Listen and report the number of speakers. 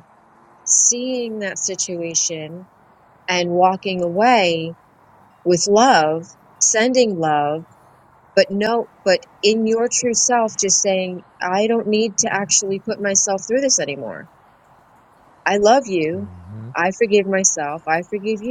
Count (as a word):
one